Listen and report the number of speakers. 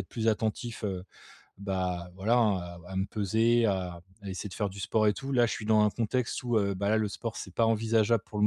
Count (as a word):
one